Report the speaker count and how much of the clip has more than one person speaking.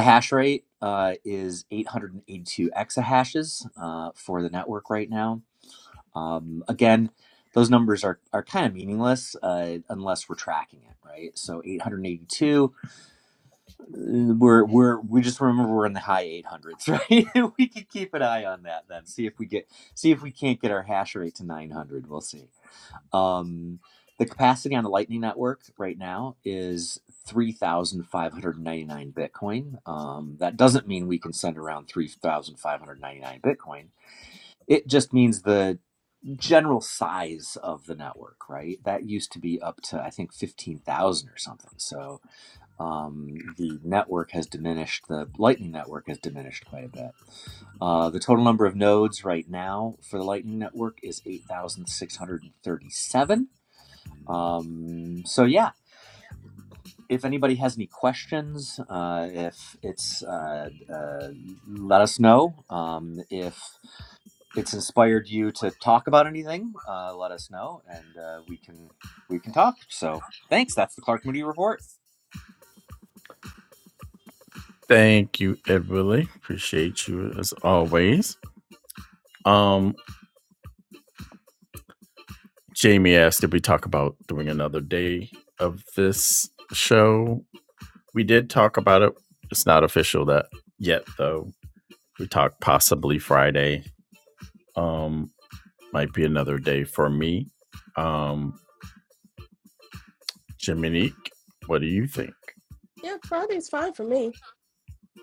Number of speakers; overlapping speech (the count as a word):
three, no overlap